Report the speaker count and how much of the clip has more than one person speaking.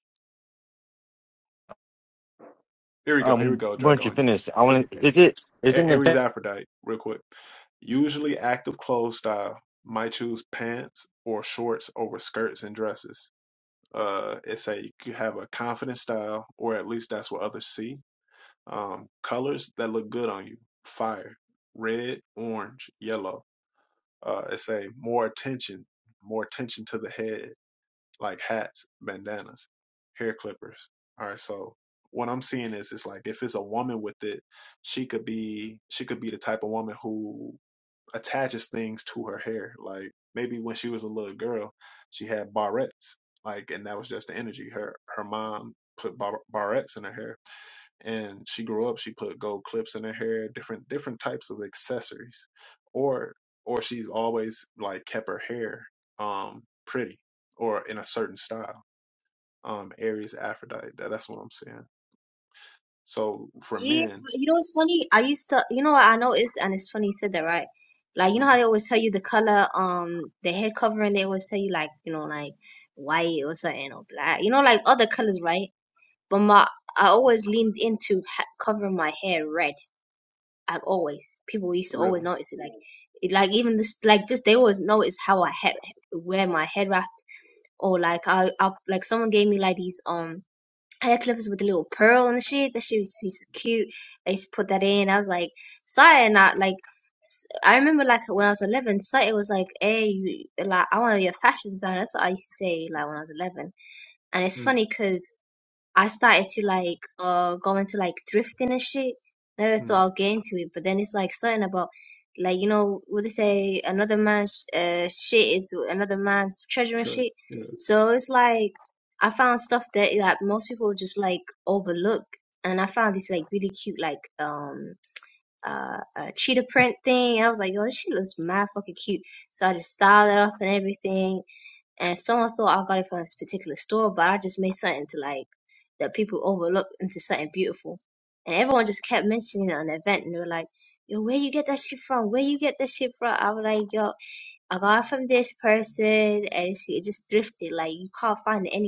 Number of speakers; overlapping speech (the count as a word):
three, about 2%